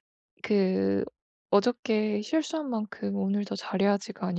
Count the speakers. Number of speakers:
one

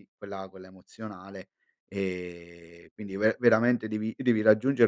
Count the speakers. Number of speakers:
one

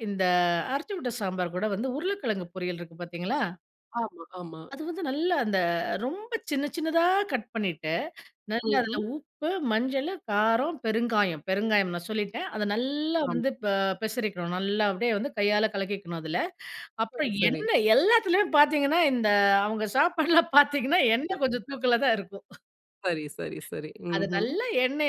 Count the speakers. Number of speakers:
two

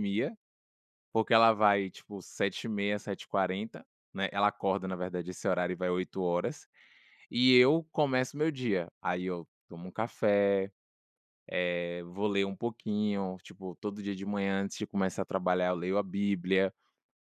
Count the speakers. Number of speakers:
one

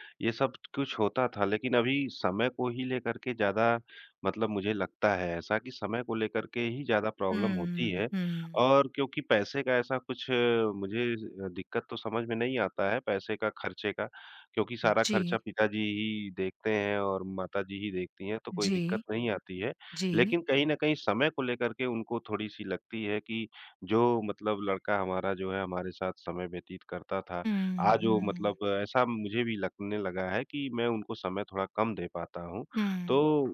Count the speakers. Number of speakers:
two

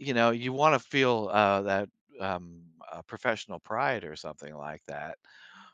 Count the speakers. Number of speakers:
one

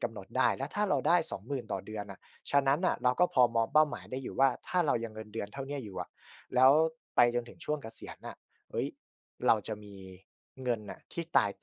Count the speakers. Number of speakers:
one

